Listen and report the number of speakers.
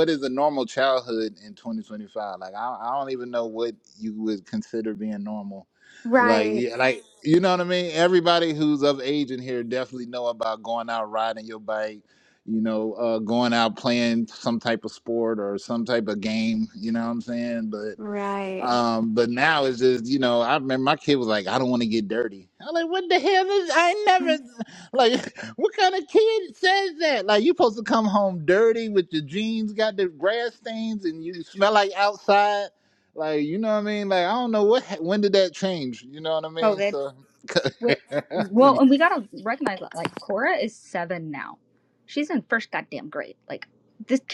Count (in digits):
3